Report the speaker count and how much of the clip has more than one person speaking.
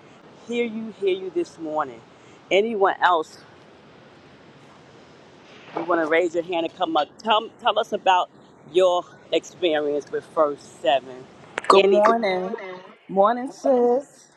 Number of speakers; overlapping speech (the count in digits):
2, about 3%